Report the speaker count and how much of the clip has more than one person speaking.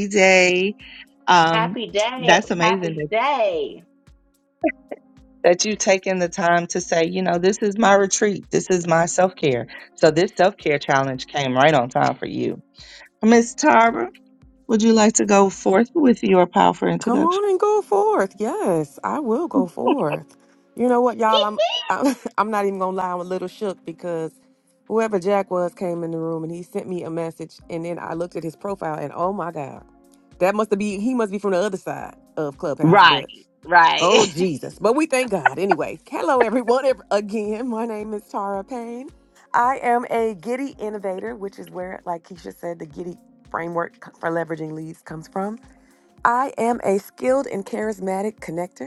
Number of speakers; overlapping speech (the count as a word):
three, about 5%